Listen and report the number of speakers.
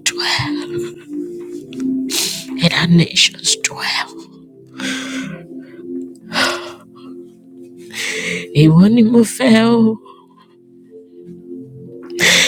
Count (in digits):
1